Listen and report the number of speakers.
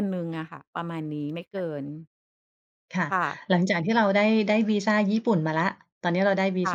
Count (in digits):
2